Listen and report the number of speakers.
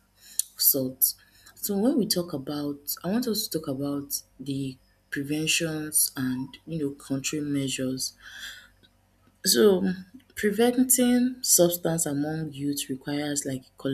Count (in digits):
1